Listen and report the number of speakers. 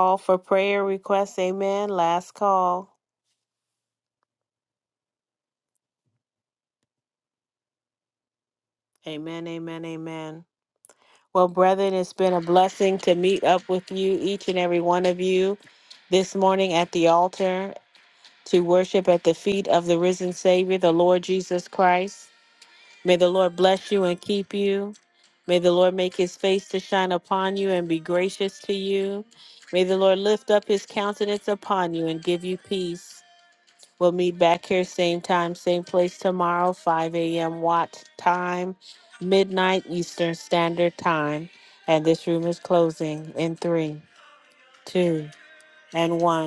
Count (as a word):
one